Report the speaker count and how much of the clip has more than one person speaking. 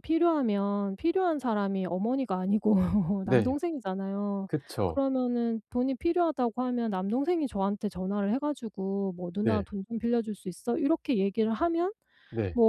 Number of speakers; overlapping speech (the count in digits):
2, about 4%